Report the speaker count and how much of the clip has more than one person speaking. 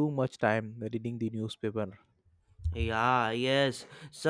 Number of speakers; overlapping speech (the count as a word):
two, no overlap